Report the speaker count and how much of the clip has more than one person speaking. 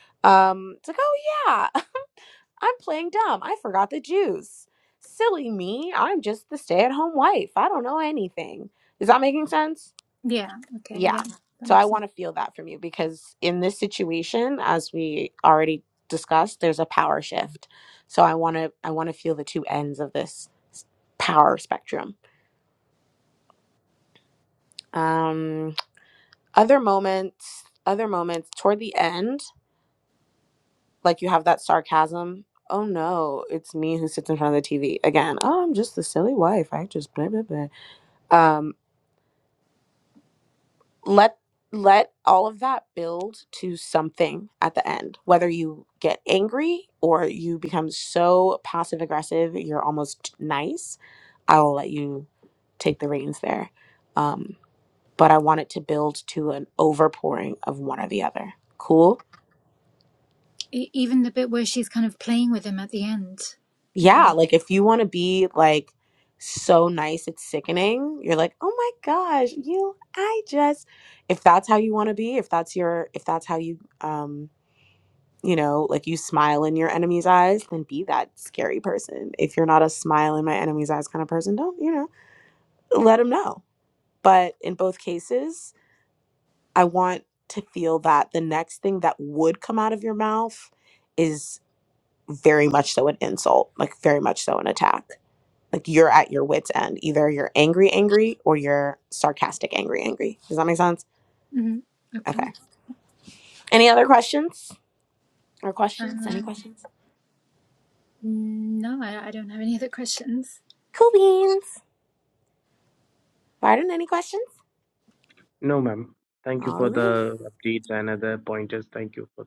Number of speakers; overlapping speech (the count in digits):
3, about 2%